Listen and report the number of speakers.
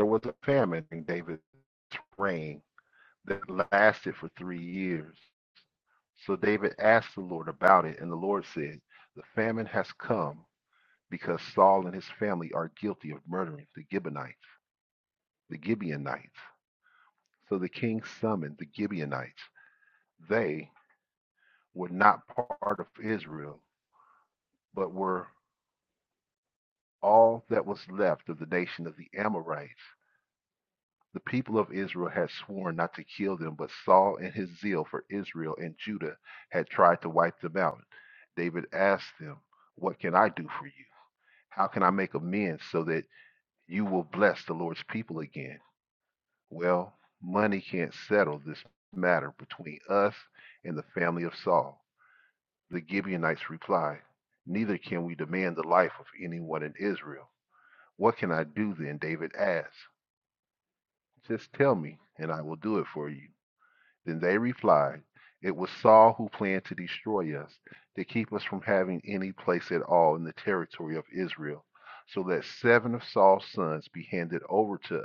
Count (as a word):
one